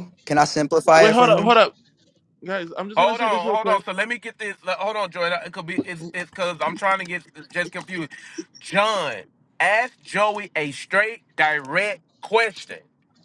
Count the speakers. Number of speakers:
three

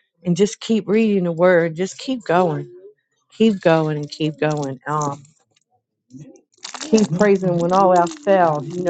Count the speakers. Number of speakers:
one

